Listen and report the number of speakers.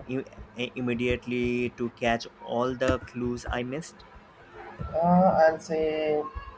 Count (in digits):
2